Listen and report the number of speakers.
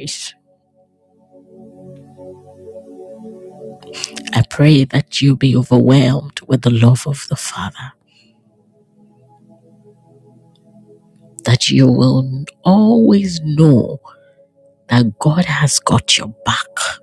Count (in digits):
1